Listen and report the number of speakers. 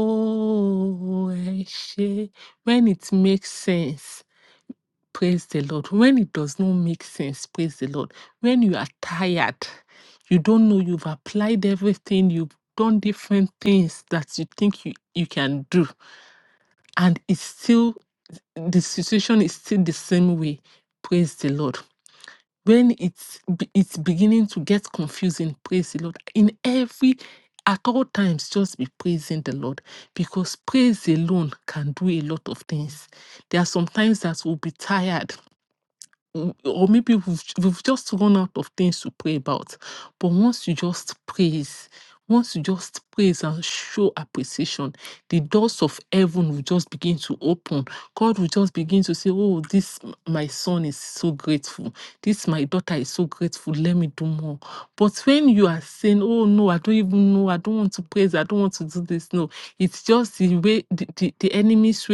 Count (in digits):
1